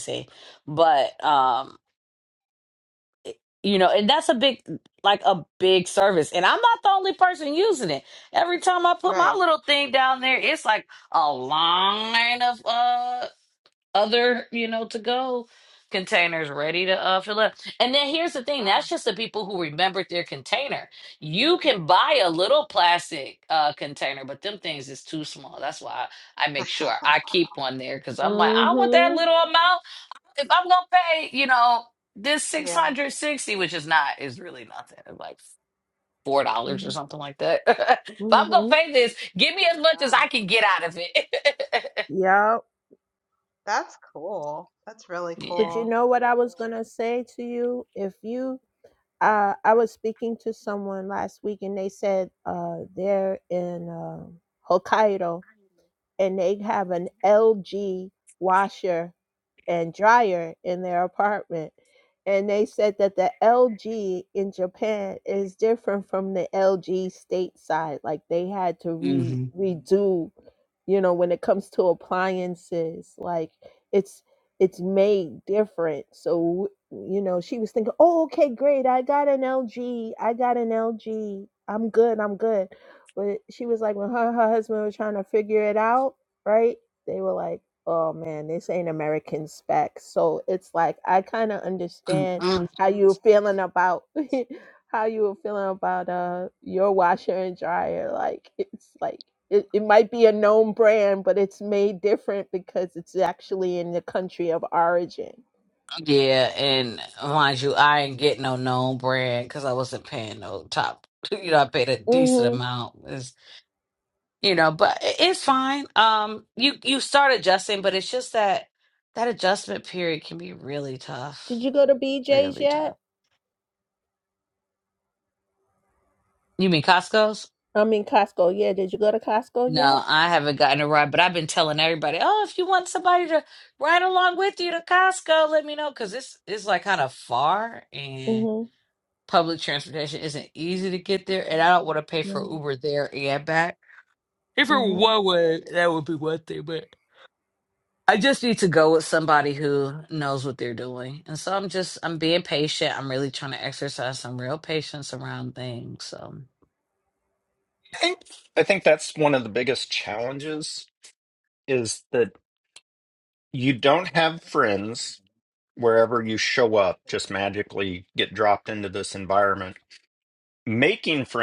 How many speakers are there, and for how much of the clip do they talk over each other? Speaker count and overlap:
four, about 4%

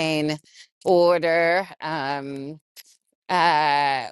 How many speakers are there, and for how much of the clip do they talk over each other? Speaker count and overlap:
one, no overlap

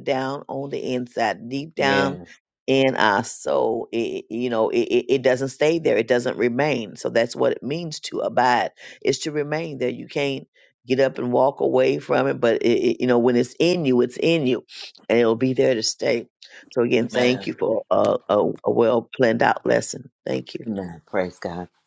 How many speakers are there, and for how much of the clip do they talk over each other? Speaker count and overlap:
two, about 4%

